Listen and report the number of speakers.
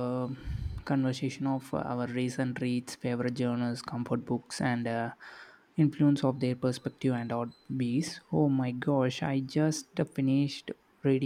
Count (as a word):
one